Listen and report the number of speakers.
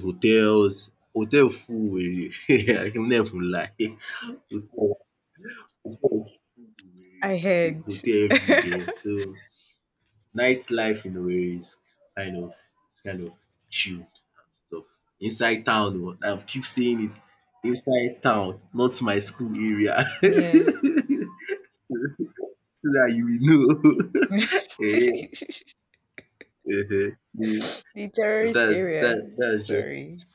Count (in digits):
2